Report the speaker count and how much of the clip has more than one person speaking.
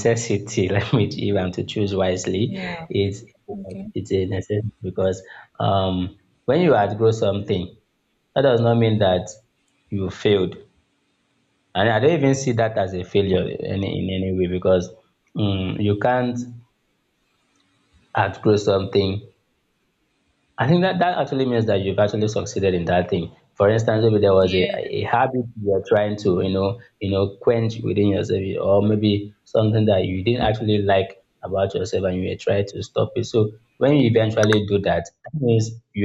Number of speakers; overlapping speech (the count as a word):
two, about 1%